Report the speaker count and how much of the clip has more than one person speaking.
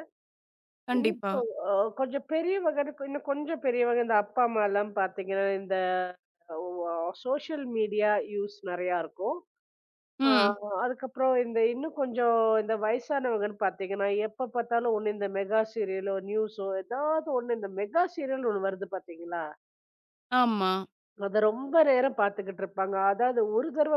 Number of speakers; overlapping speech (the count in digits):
2, about 3%